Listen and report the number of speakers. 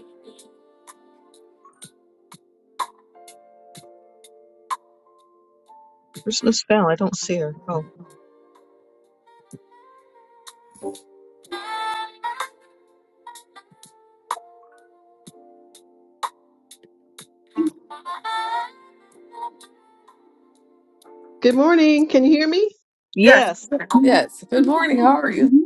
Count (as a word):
three